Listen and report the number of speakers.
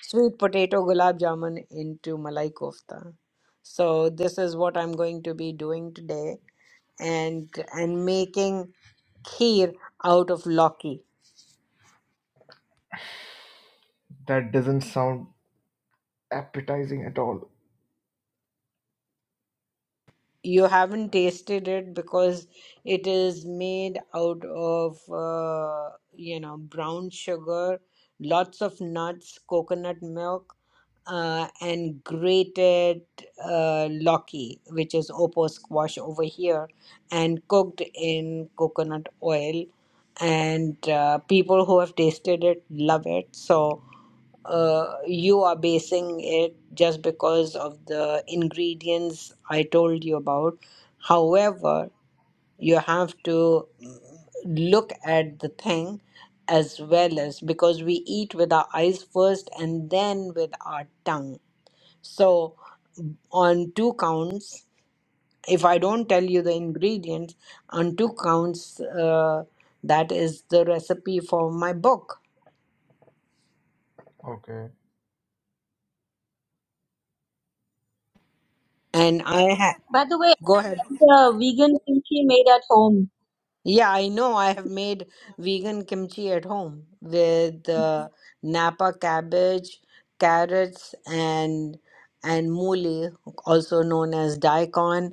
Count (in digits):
3